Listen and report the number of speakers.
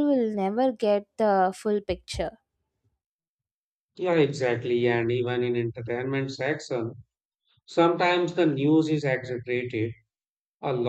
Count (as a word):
two